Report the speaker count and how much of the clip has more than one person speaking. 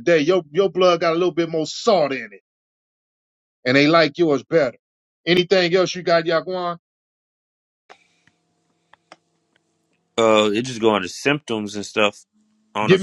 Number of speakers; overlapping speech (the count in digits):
2, about 2%